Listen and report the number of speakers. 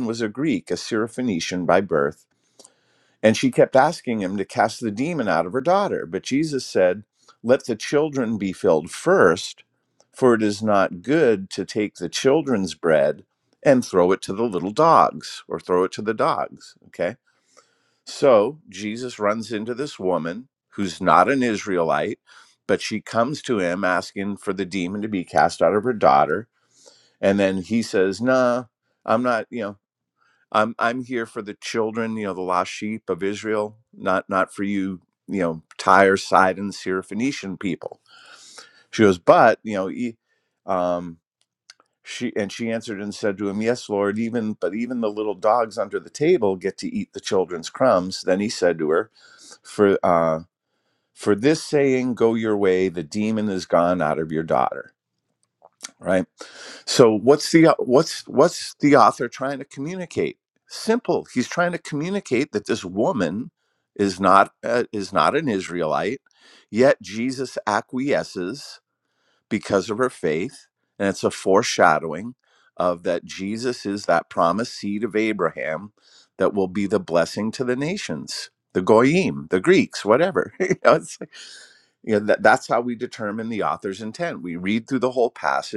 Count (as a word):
one